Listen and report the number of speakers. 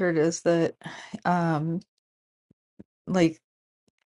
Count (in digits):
1